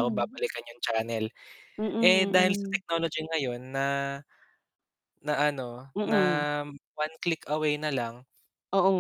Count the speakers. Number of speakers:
two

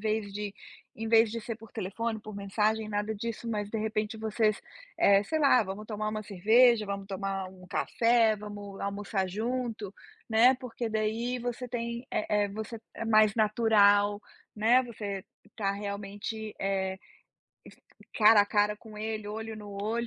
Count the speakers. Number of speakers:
one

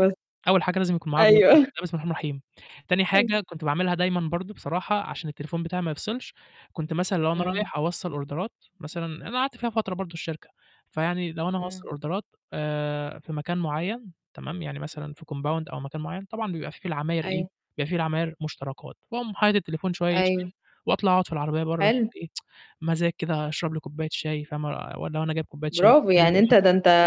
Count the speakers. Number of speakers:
two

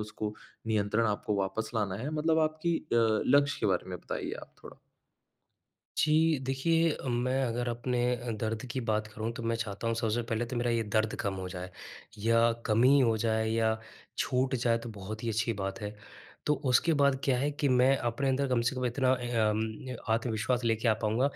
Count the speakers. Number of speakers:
two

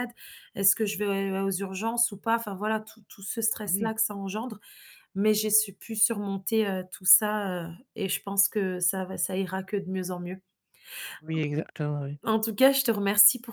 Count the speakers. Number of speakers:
two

